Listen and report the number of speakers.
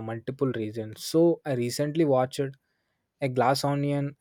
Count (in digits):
1